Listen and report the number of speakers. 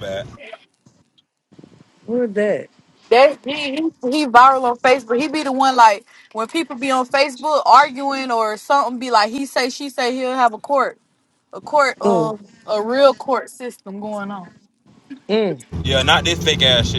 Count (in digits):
3